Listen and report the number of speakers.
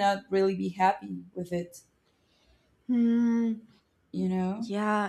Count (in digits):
2